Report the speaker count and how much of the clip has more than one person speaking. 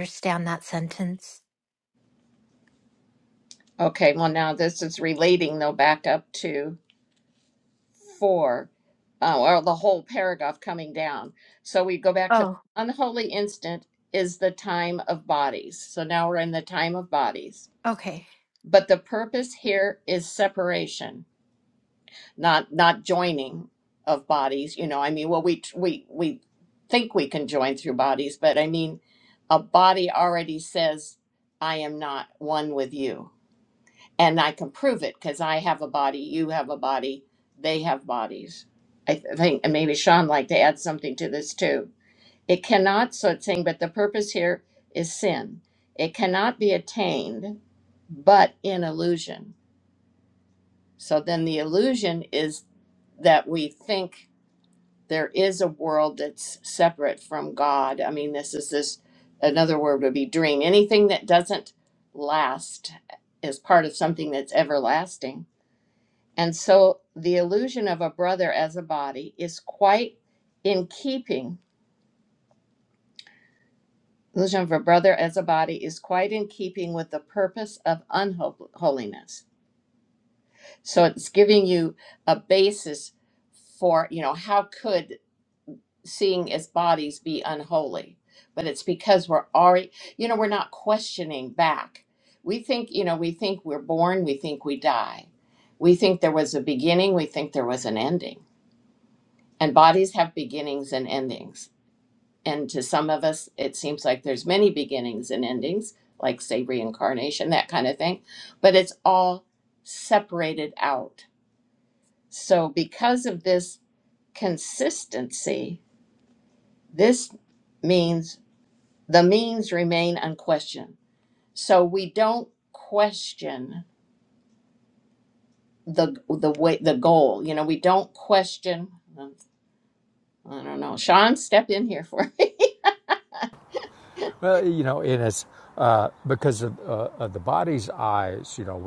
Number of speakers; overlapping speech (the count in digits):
3, under 1%